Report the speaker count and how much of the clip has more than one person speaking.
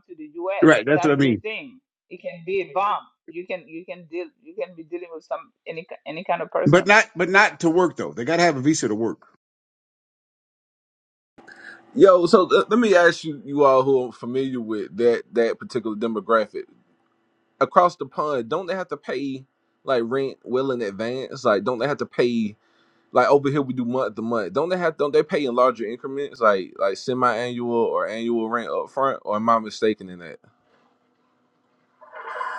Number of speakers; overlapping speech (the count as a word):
three, about 3%